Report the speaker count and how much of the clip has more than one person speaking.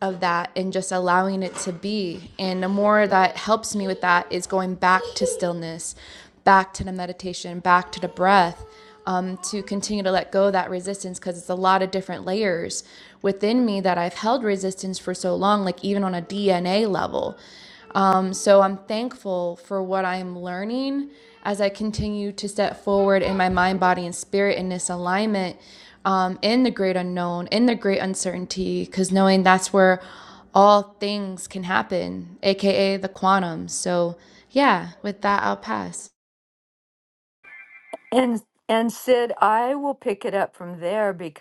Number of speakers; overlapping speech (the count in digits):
2, no overlap